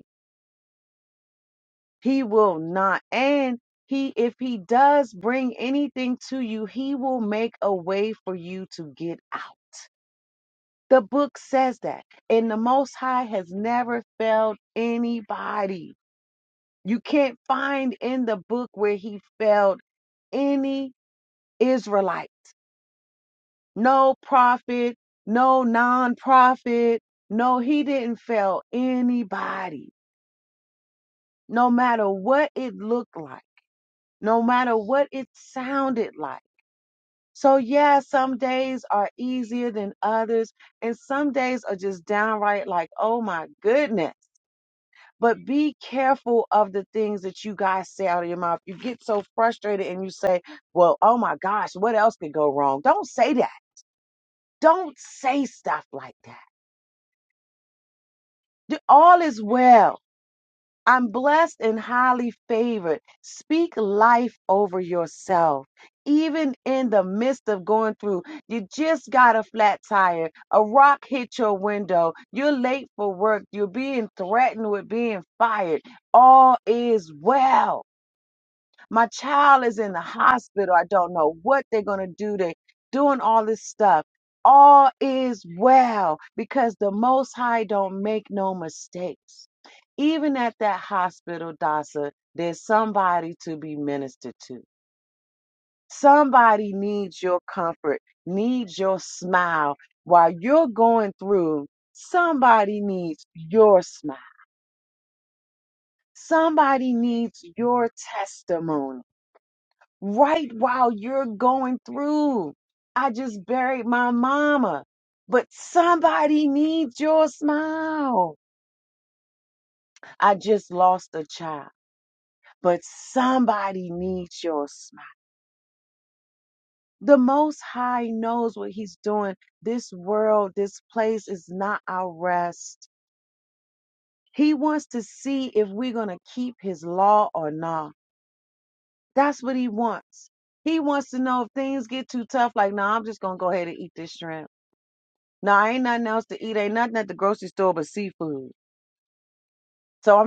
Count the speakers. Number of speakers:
1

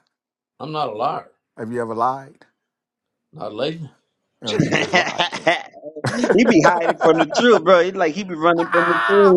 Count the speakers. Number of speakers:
3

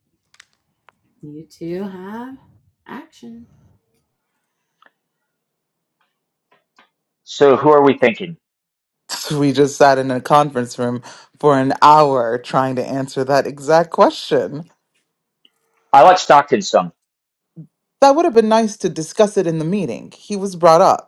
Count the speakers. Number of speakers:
3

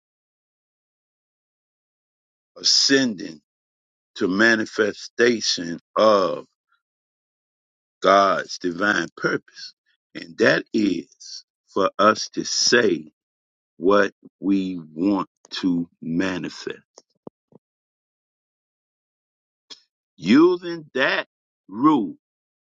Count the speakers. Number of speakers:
1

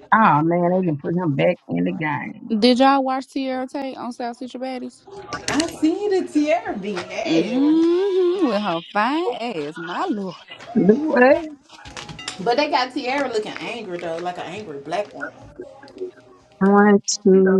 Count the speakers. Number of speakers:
3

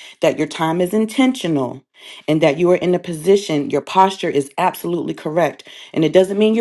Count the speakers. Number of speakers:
1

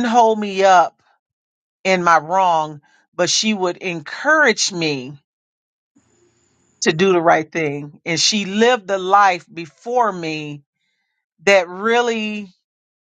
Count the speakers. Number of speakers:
1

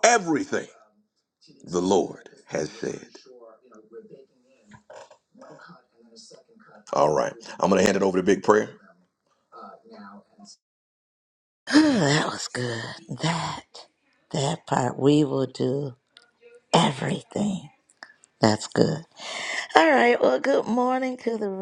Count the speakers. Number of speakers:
2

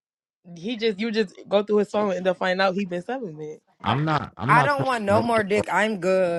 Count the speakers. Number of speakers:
3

